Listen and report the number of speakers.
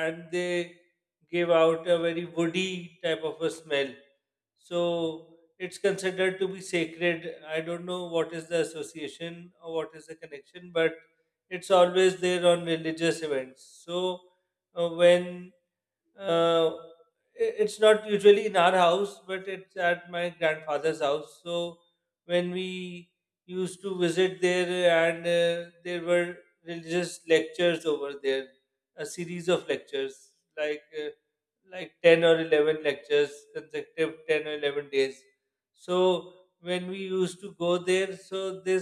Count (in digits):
1